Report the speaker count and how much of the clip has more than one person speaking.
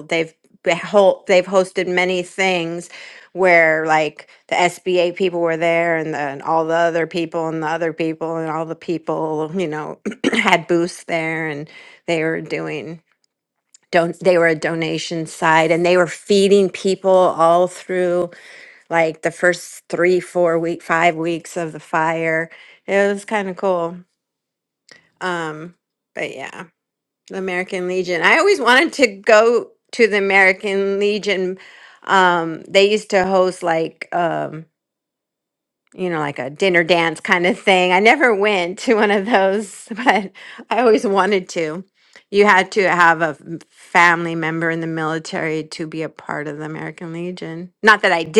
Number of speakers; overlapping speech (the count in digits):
1, no overlap